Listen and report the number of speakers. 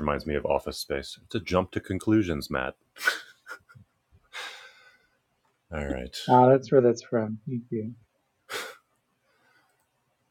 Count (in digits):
2